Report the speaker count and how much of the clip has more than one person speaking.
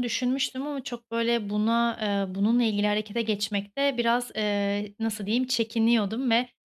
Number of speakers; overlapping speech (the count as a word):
one, no overlap